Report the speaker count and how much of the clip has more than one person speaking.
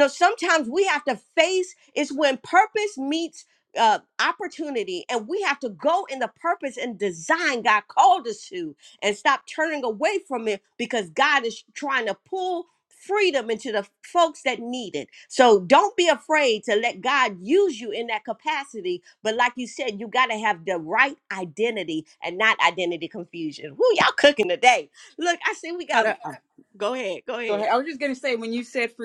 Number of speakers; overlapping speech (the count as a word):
two, about 1%